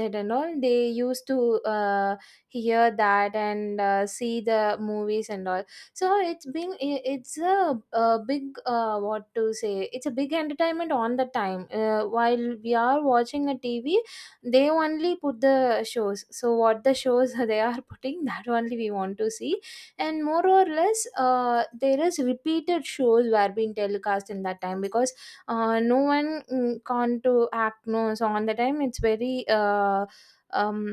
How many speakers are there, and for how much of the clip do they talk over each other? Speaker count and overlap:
1, no overlap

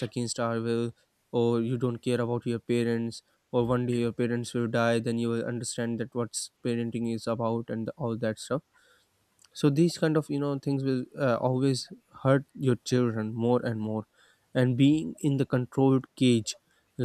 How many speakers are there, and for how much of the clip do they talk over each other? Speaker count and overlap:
1, no overlap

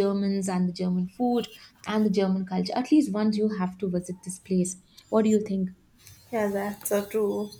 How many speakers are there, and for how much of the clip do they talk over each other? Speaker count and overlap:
2, no overlap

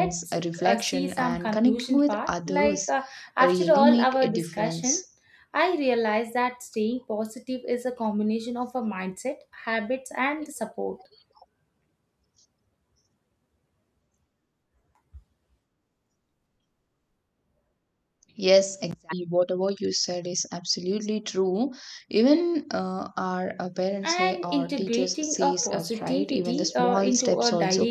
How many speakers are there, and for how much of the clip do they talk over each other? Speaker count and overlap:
2, about 29%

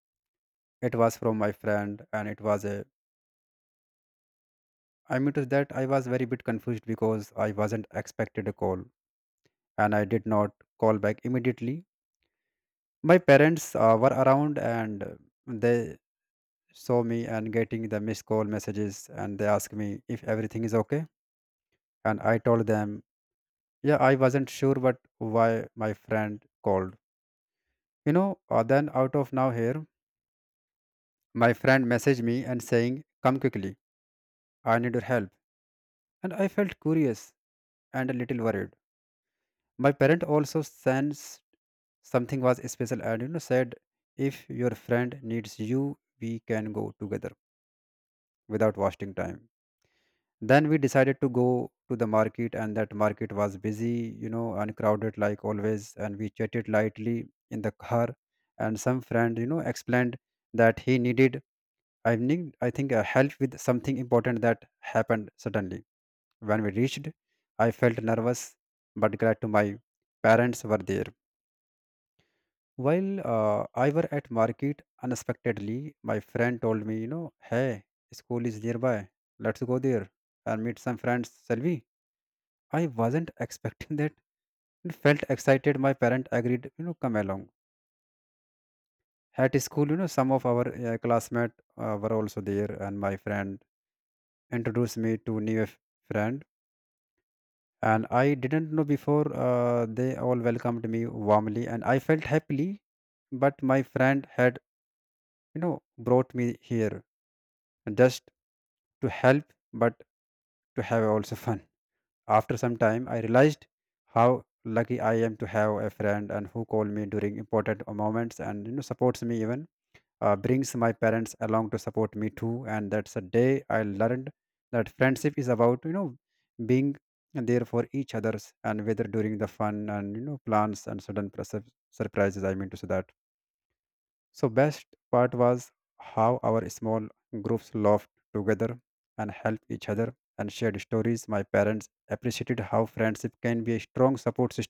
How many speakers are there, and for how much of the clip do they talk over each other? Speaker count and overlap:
1, no overlap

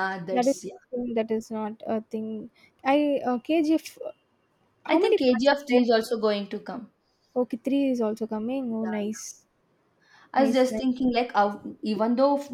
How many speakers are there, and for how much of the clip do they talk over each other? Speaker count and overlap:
2, about 16%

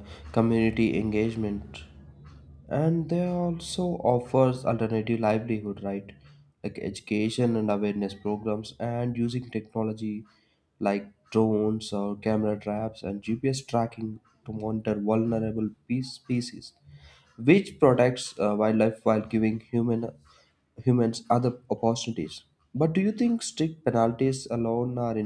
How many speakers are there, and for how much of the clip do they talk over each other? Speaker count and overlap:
1, no overlap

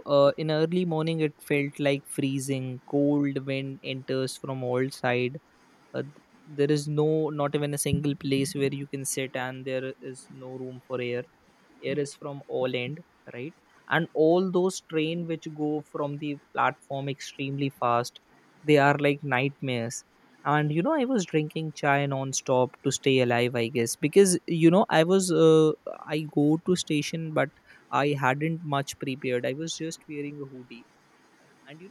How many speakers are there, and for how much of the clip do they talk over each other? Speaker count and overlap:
1, no overlap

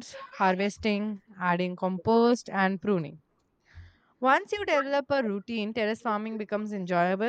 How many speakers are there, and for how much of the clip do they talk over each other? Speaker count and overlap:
1, no overlap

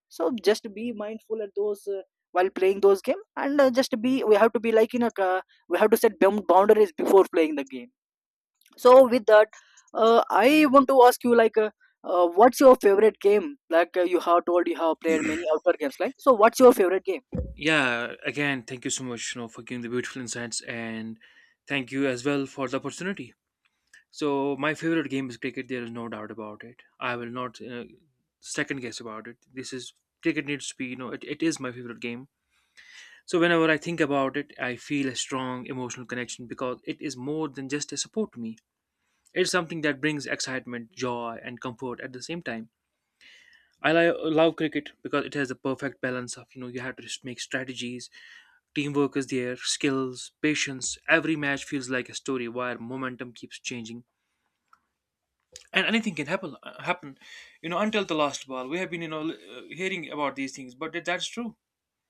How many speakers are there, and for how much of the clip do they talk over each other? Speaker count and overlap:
2, no overlap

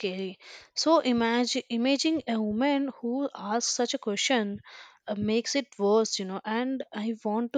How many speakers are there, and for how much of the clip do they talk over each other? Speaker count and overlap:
1, no overlap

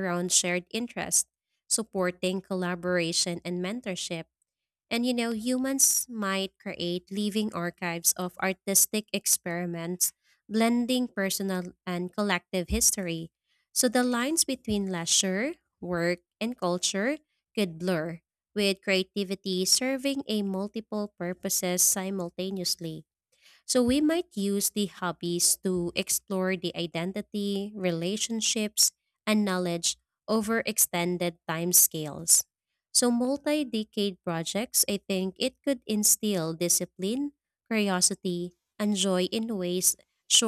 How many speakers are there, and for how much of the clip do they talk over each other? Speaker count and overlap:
1, no overlap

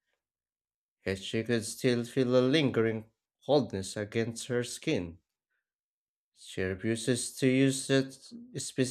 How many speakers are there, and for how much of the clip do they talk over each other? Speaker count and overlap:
1, no overlap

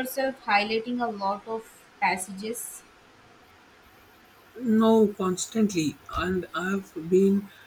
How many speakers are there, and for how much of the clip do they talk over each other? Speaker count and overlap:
2, no overlap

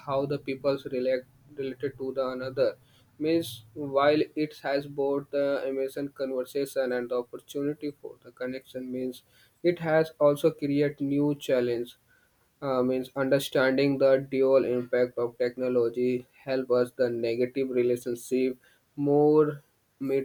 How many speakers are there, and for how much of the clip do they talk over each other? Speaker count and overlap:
1, no overlap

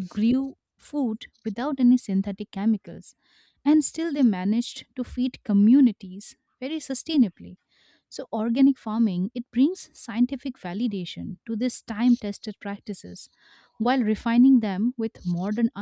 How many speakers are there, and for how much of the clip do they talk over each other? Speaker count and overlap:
1, no overlap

